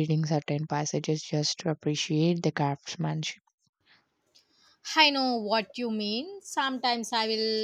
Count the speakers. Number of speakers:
2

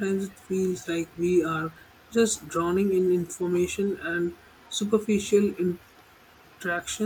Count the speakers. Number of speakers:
1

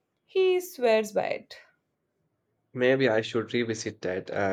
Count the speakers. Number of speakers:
2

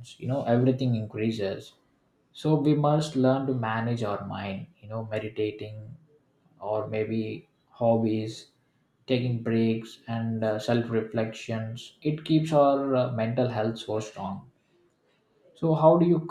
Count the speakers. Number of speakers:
1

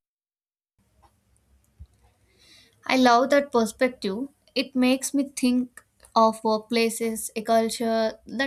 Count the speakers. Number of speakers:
1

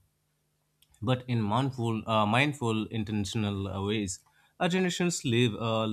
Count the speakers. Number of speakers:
1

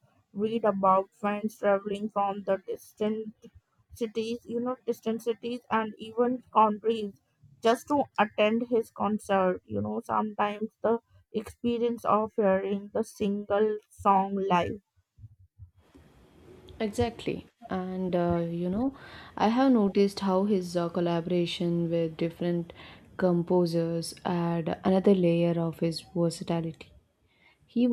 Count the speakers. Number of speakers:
2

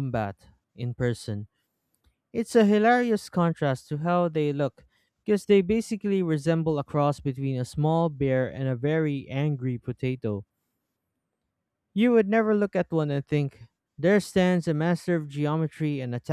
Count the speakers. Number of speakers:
1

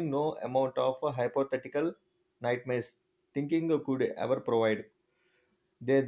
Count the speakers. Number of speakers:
1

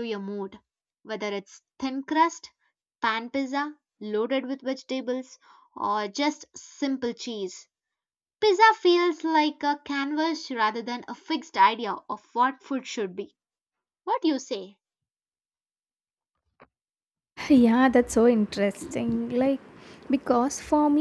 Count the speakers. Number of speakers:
2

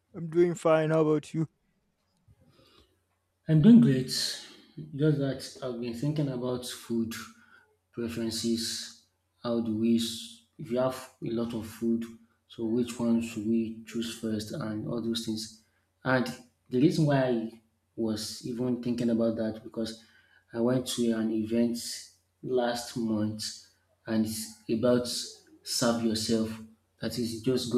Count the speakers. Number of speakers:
2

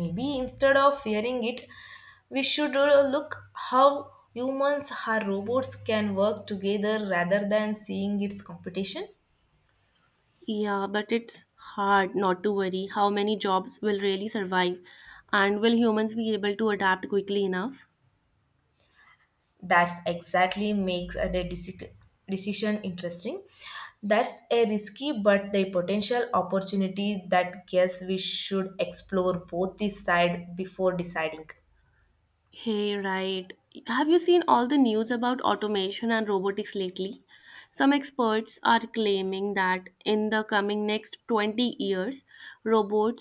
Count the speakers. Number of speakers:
2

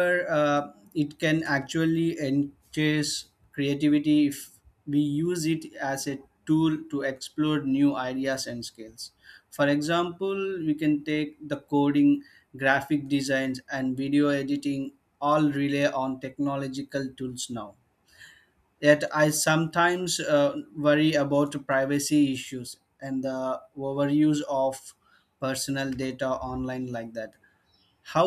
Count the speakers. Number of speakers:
1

